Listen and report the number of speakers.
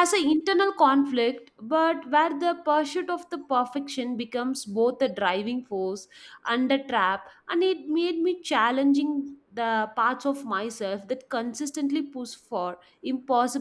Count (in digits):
1